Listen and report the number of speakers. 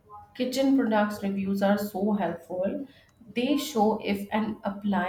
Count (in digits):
1